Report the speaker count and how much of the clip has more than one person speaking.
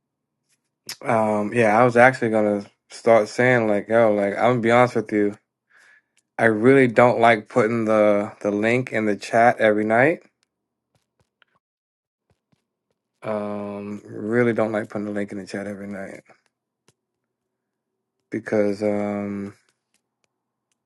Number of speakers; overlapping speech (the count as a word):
one, no overlap